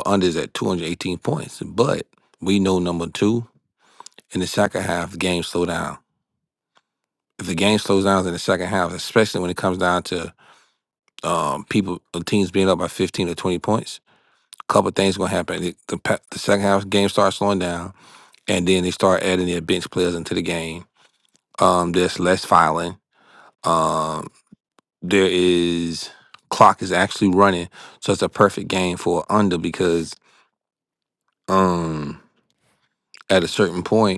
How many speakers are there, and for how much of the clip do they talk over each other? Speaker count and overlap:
one, no overlap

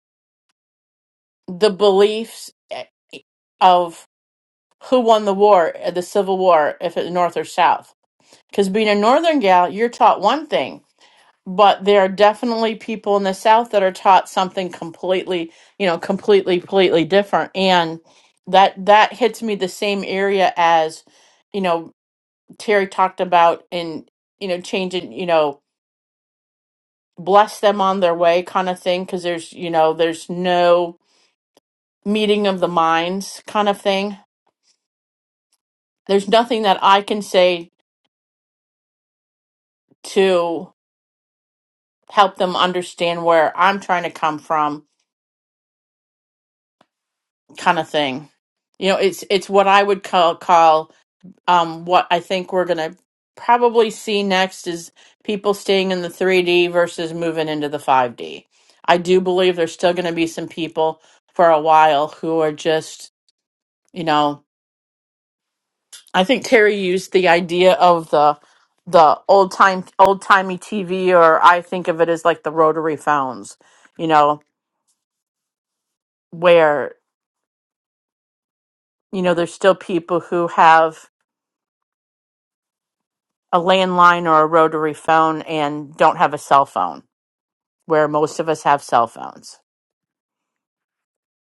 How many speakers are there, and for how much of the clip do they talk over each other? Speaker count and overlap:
one, no overlap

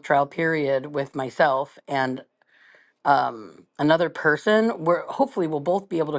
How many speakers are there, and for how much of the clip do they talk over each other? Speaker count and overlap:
one, no overlap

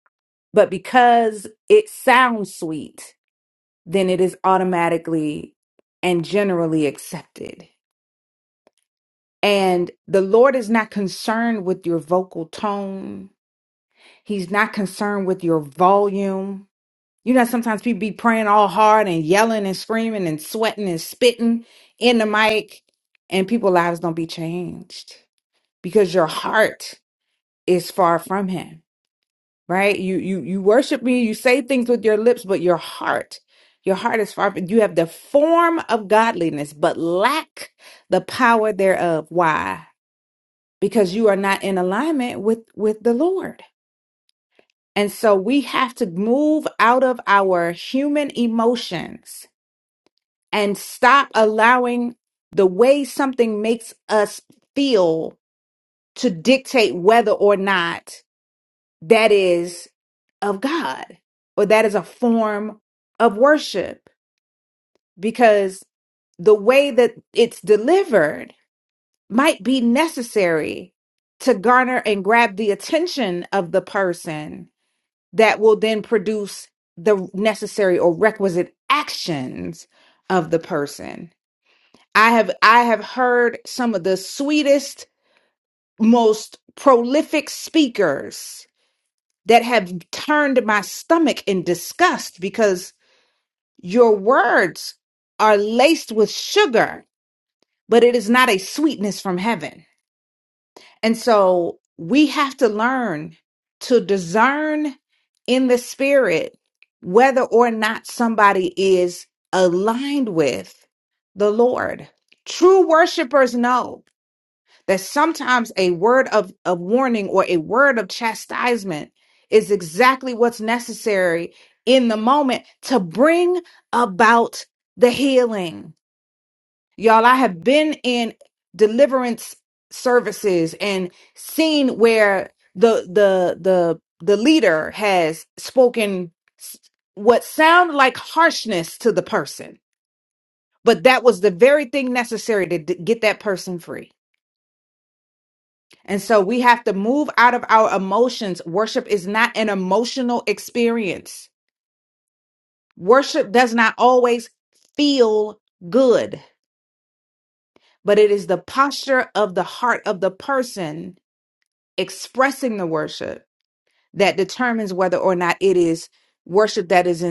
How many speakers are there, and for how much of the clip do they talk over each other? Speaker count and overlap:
one, no overlap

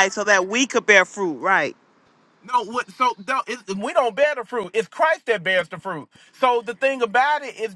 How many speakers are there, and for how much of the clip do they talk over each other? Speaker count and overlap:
two, no overlap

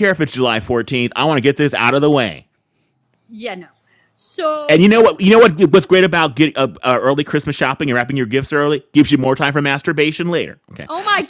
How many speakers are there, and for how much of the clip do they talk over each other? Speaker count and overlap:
two, about 1%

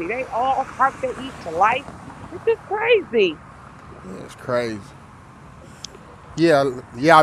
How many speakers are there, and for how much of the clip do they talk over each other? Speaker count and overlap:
two, no overlap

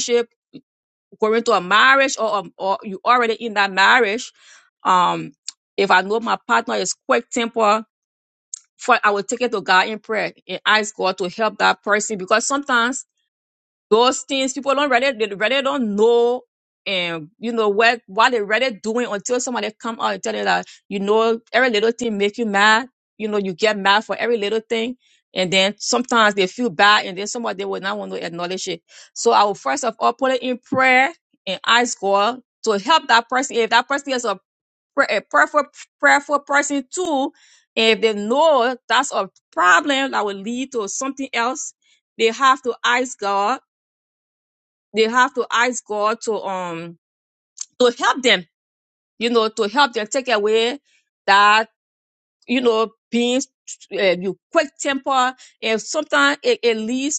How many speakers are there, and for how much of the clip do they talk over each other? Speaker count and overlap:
one, no overlap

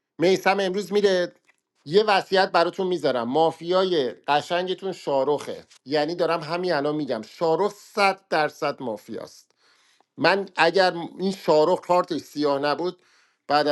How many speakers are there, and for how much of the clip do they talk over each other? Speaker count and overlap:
one, no overlap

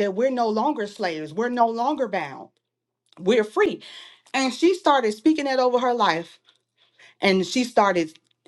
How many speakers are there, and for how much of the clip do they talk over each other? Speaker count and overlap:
one, no overlap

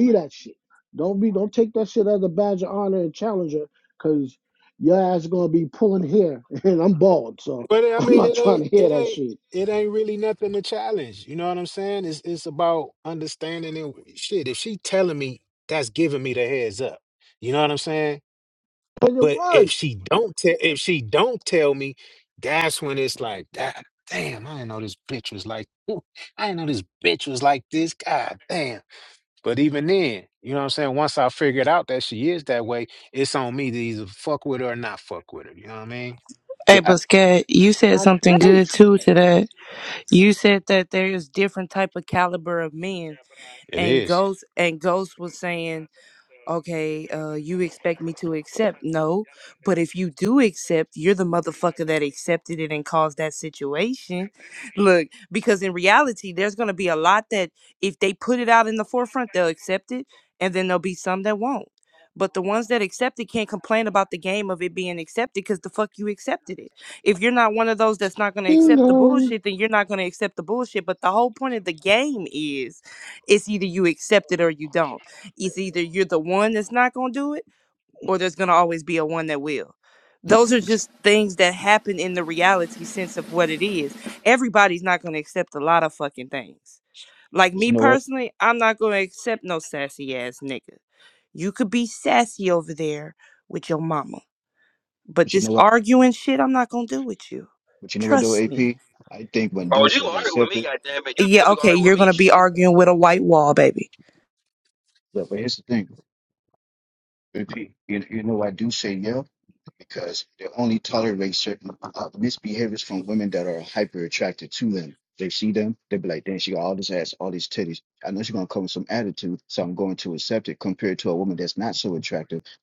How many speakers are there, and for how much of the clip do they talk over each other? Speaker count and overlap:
five, about 7%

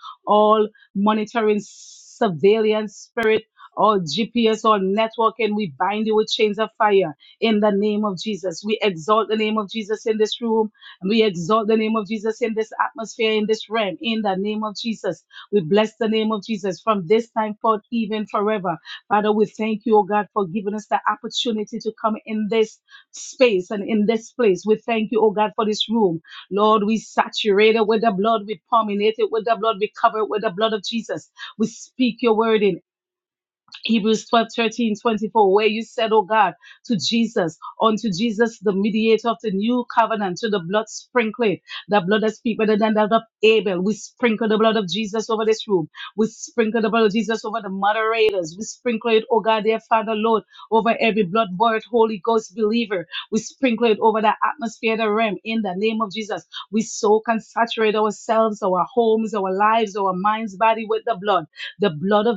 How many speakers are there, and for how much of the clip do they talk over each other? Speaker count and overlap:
one, no overlap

